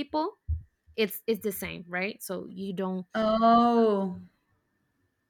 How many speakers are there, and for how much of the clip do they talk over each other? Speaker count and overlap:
two, no overlap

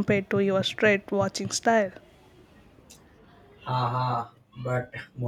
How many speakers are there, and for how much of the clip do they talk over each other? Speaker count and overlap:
two, no overlap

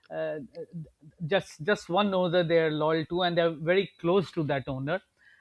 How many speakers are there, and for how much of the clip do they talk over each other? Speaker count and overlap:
one, no overlap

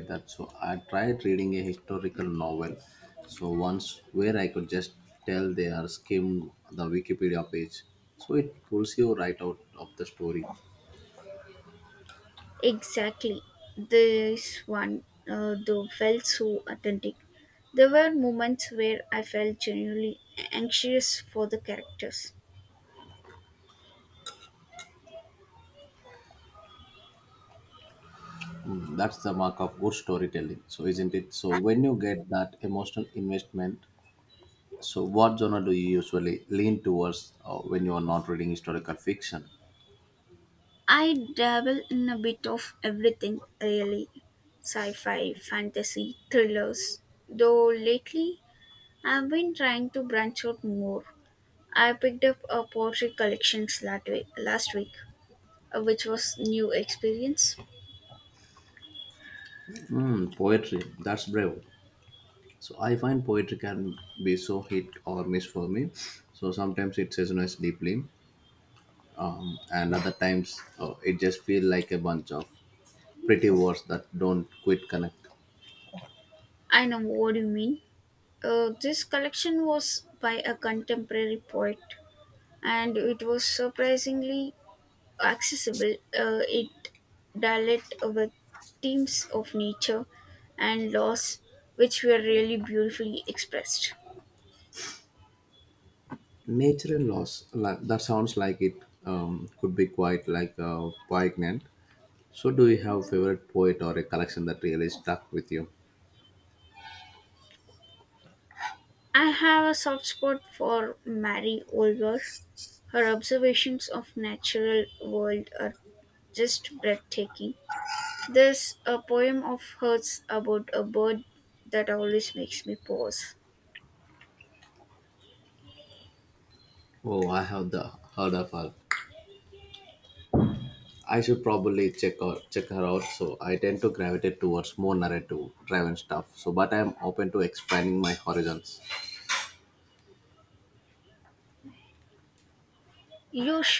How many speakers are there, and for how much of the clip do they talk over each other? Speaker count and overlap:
two, no overlap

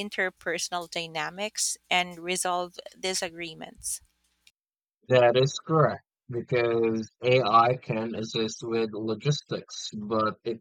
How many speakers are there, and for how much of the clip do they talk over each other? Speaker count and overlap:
two, no overlap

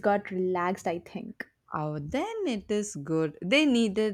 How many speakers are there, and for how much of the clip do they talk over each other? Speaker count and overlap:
two, no overlap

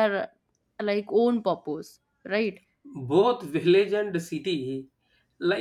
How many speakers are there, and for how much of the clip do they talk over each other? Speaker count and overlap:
two, no overlap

